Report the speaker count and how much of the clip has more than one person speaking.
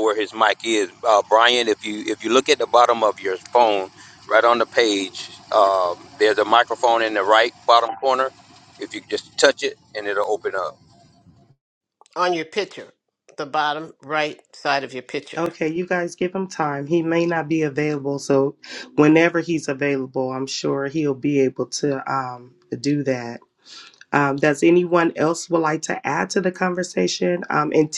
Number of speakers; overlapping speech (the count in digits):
3, about 1%